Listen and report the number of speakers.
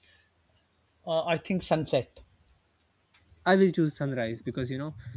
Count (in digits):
2